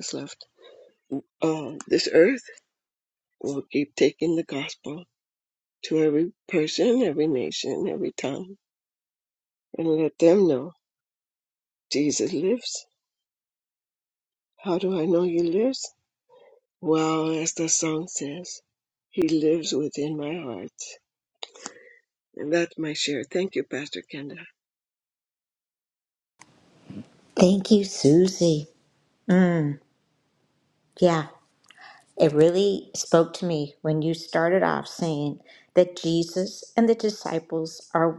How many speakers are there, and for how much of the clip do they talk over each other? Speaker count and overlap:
two, no overlap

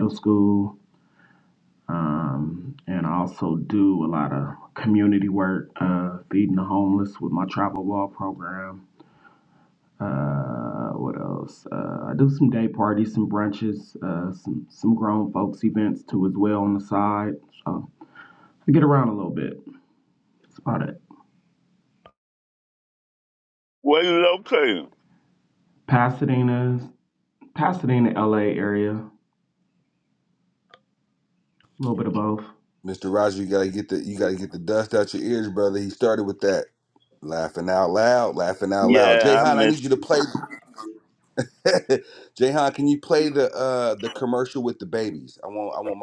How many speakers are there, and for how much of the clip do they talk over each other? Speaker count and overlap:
three, about 2%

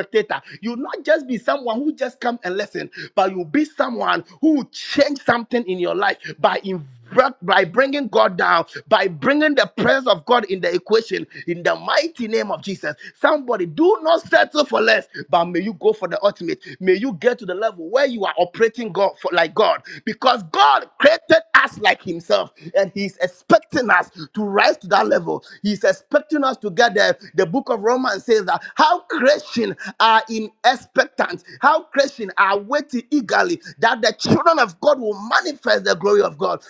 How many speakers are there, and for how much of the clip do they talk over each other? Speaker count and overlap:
one, no overlap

